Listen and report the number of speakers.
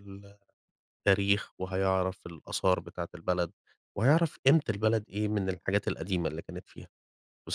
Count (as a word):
one